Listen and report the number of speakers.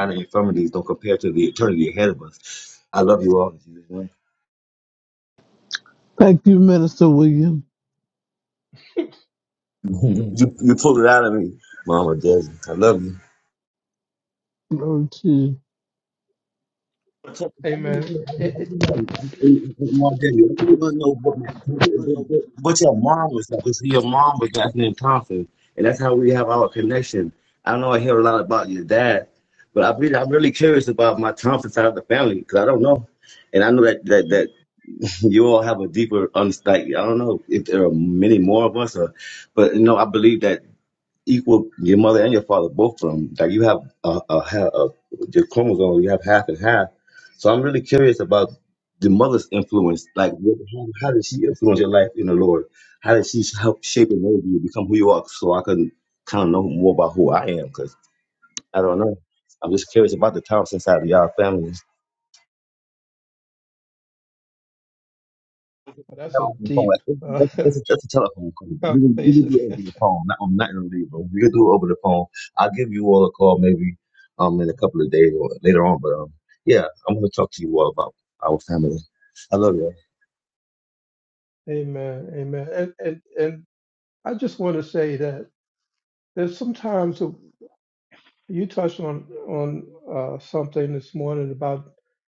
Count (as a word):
three